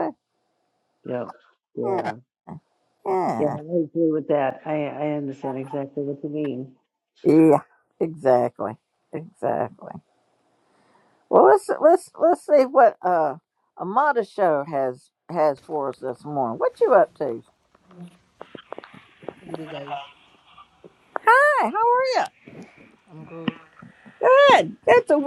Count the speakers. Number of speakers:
three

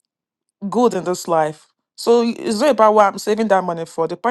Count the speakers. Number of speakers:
one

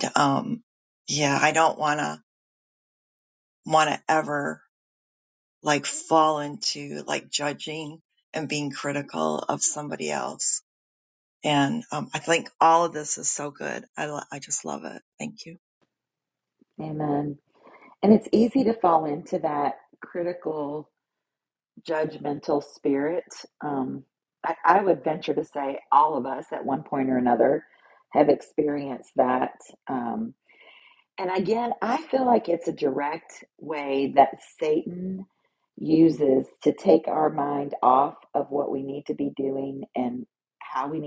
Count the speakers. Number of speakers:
two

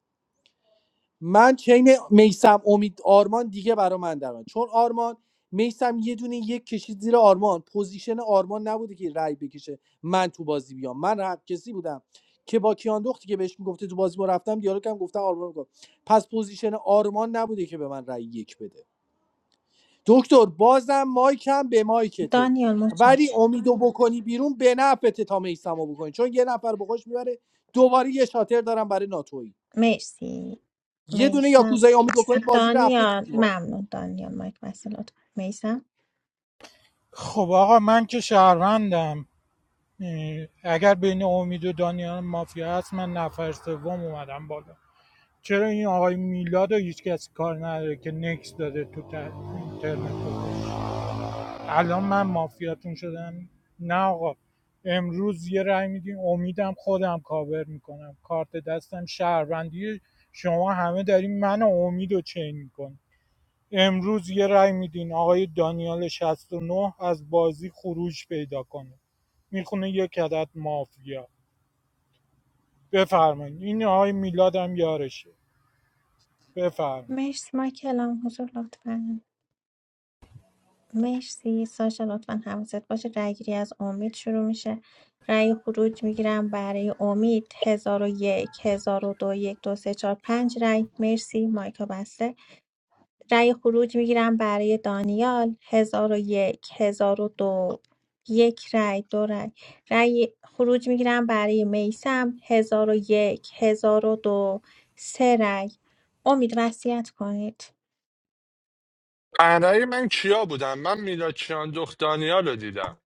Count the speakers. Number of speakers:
four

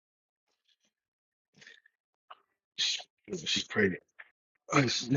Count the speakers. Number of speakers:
one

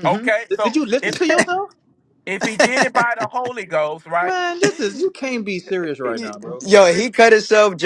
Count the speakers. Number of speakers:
three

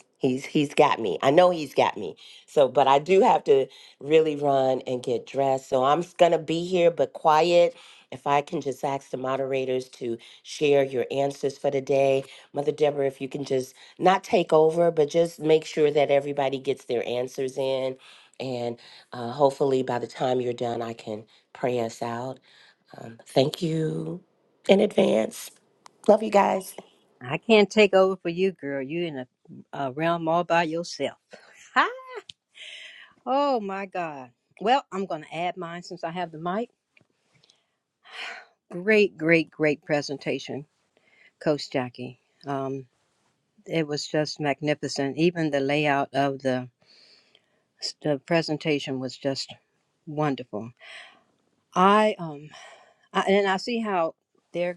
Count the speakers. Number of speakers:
two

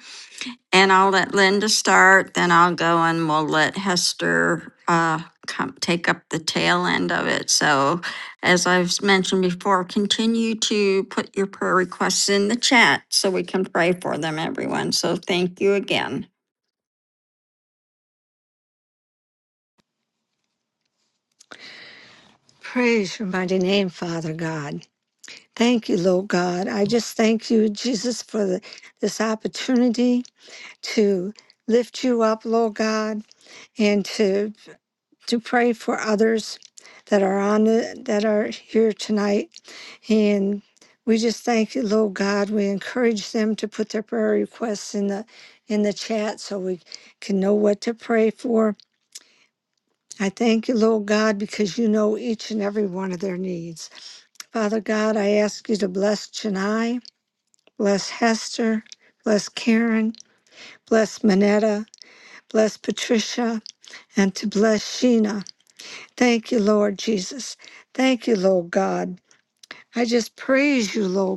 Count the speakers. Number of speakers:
two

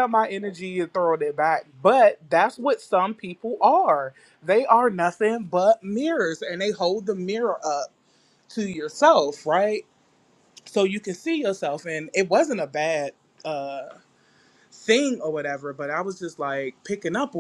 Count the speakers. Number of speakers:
one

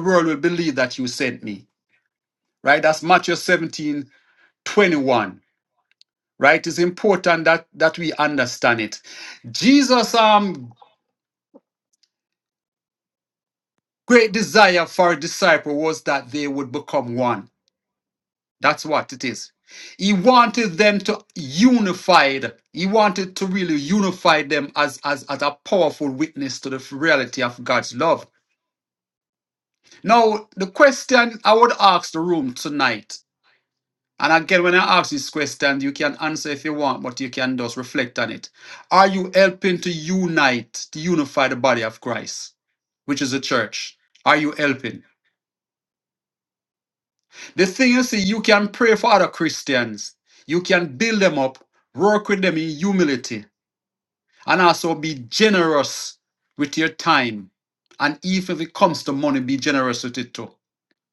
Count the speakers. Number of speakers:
one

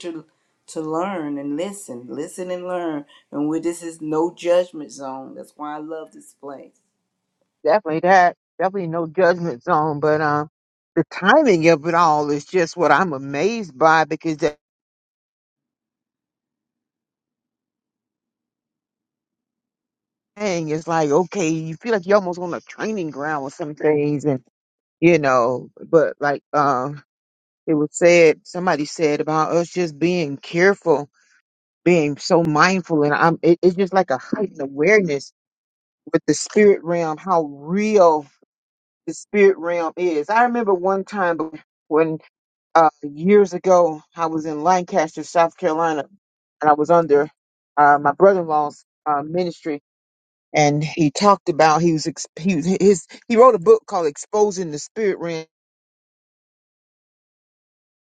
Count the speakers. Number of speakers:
two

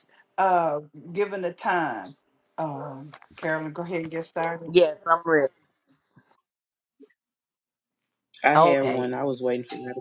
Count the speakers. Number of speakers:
three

